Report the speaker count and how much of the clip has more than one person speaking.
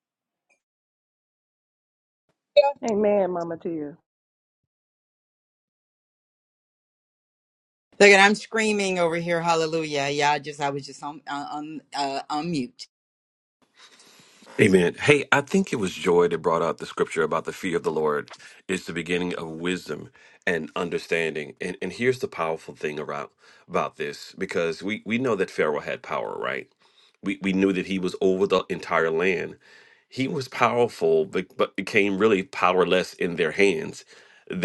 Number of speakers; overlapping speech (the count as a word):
three, no overlap